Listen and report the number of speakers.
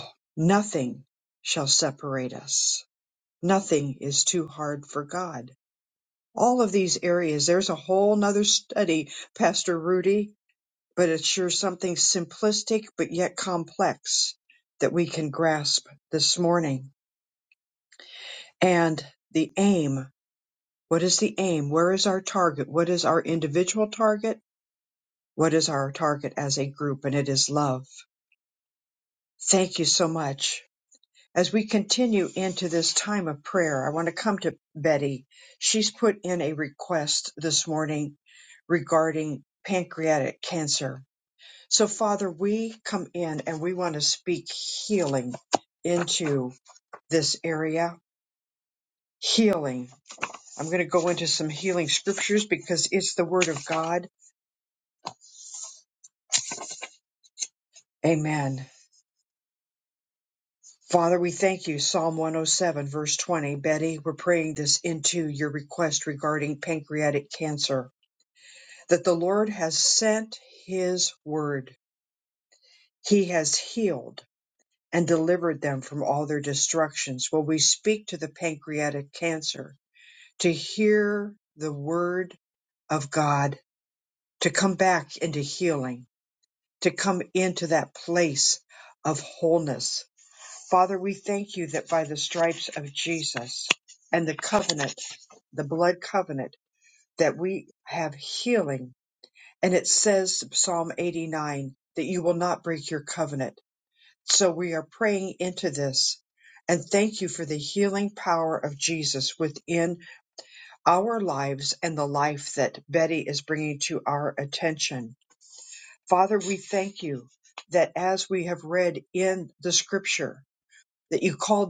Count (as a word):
one